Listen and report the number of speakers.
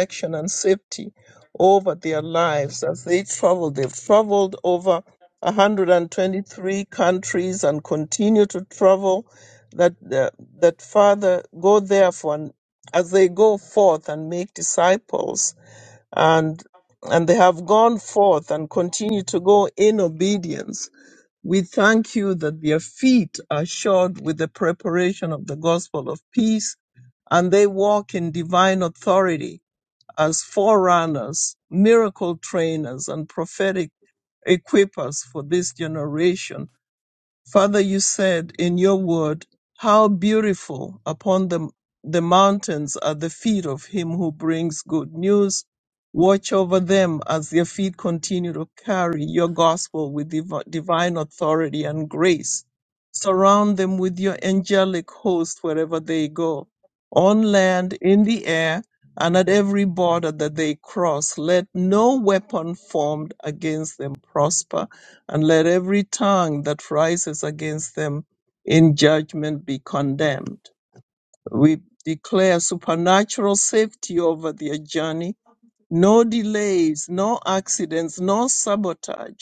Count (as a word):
one